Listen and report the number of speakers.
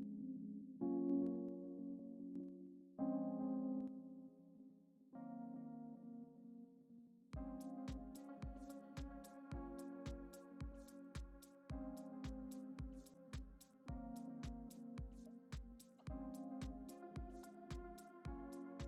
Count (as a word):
zero